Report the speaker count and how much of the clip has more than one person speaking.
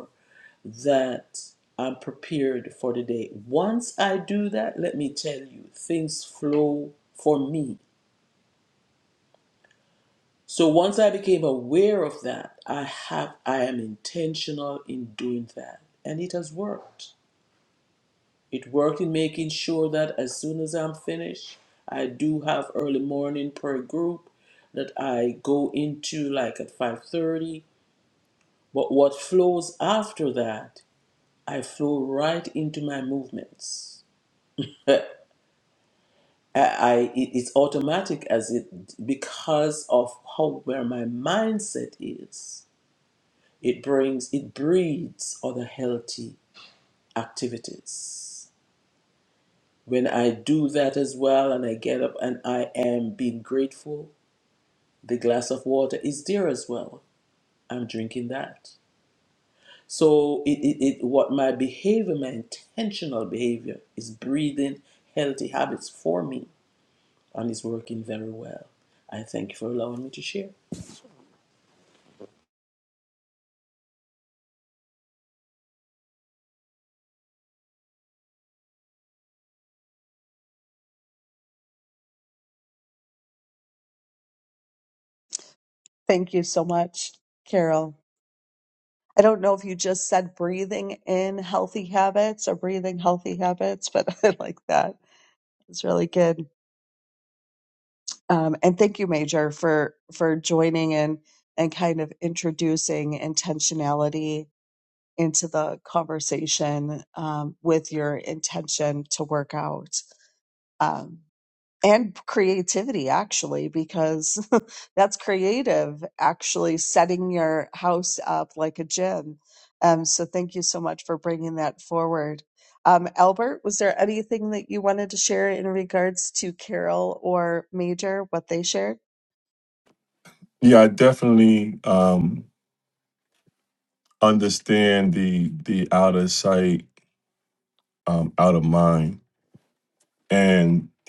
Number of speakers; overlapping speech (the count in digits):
3, no overlap